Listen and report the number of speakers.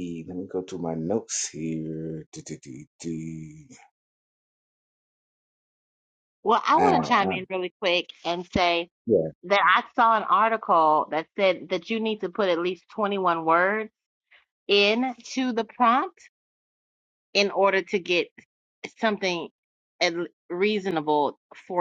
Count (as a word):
two